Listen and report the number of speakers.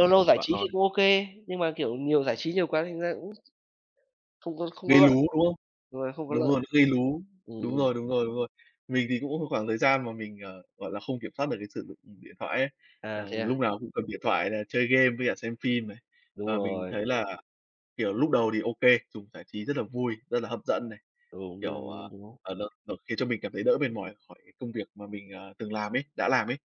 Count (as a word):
two